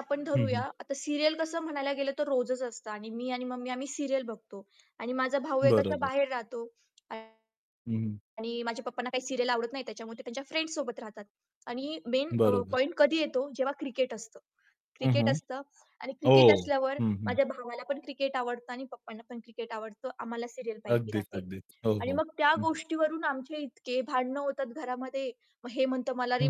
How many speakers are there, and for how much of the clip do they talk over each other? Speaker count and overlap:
2, about 12%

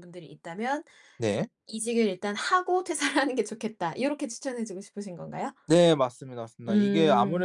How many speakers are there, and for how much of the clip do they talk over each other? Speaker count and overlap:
2, about 11%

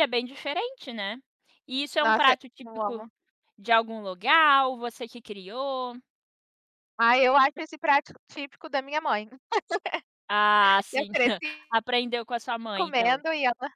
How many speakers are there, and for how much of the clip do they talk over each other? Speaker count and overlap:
2, about 12%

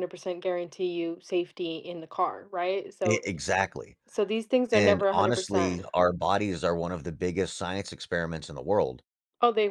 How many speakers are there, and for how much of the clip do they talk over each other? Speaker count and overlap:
2, about 14%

